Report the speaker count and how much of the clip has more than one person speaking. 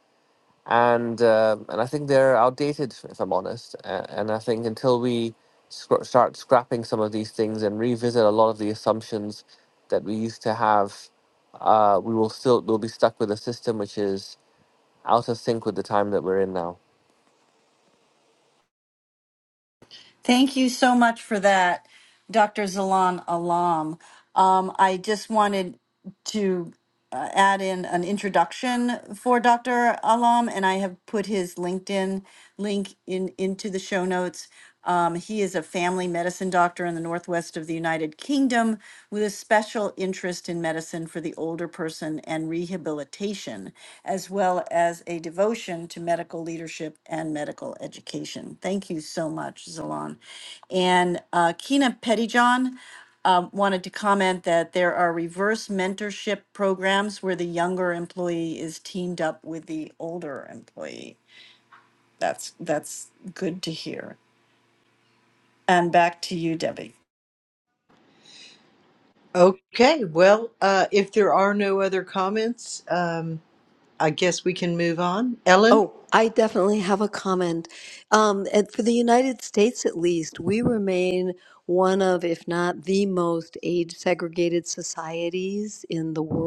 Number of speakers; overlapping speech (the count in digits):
4, under 1%